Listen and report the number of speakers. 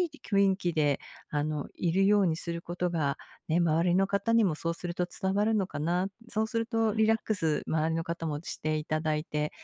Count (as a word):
one